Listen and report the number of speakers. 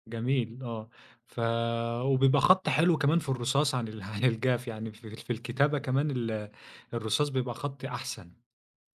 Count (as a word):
one